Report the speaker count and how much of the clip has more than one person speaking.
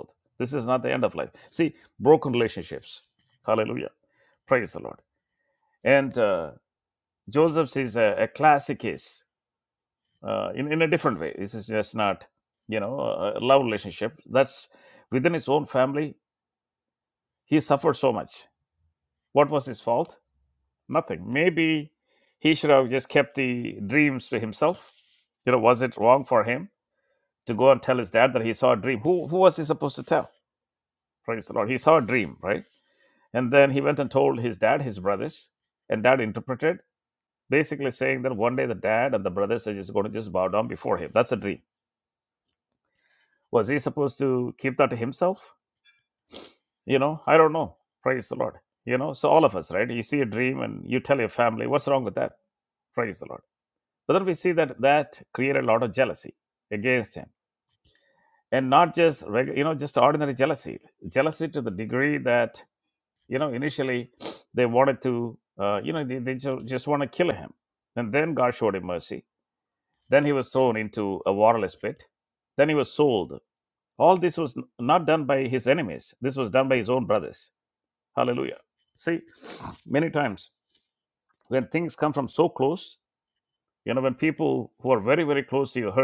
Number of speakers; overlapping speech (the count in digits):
1, no overlap